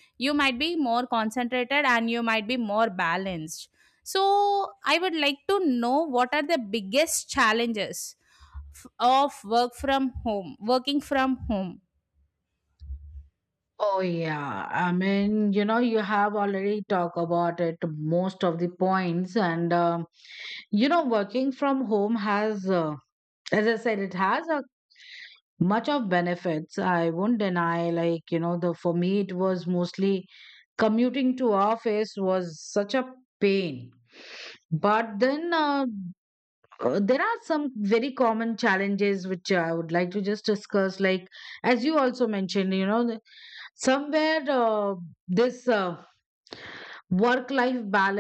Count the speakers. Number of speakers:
2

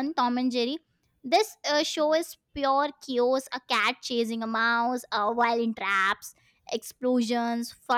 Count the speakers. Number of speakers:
1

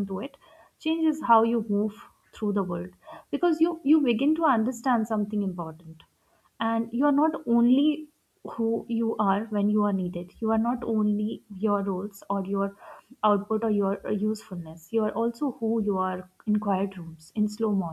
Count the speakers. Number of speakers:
1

